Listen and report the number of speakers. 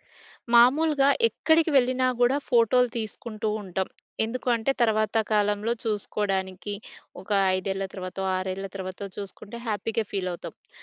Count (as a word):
one